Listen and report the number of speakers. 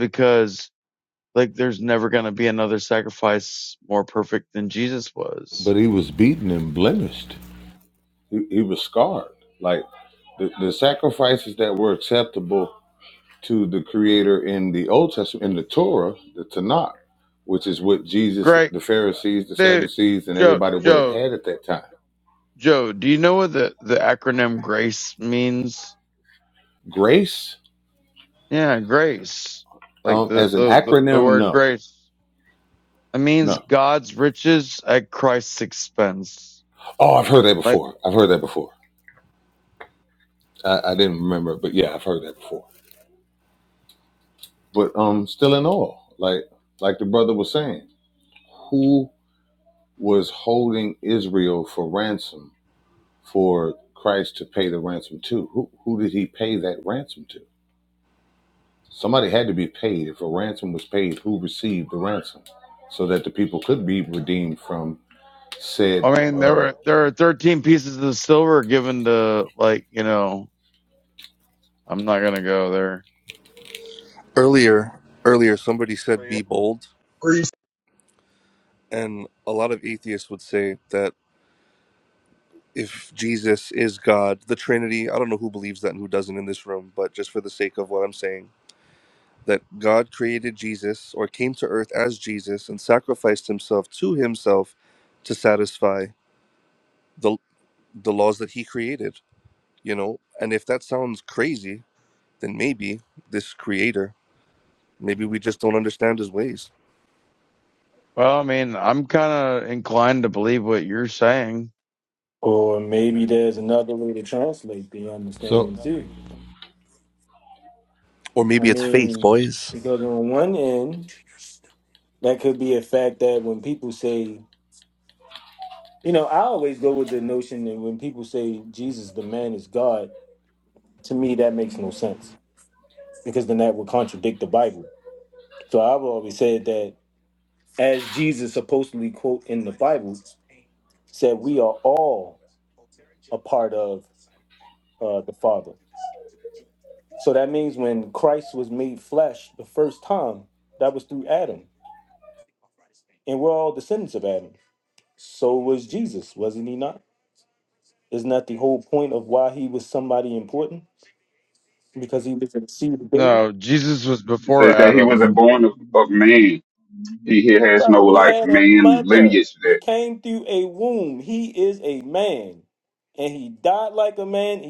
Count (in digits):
5